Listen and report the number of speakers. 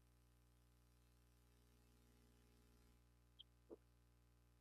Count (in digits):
0